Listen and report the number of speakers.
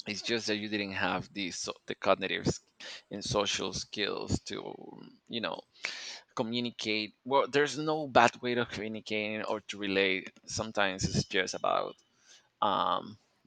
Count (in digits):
1